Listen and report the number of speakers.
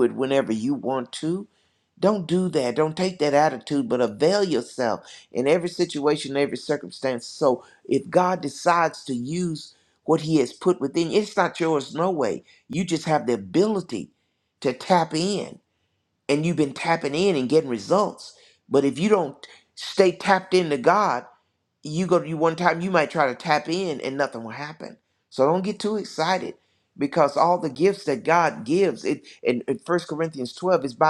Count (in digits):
1